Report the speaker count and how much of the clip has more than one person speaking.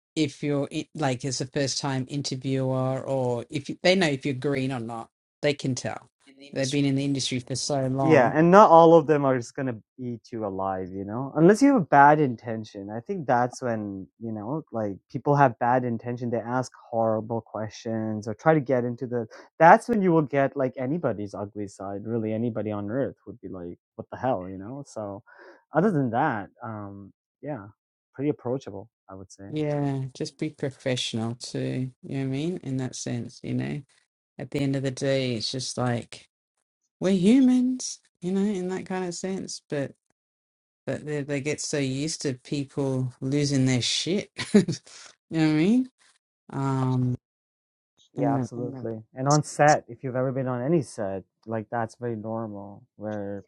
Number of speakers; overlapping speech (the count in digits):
2, about 1%